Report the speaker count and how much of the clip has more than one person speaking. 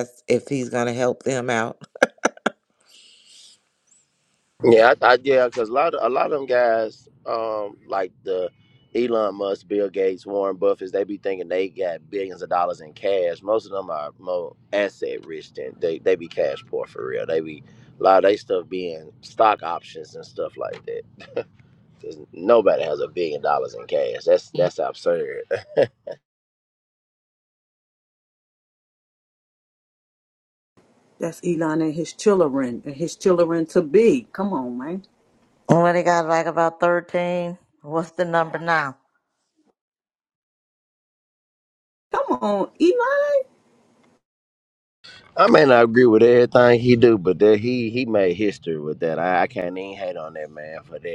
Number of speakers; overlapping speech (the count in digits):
4, no overlap